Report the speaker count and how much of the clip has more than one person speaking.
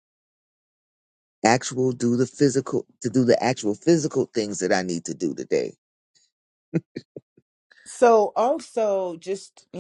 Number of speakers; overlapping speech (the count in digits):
2, no overlap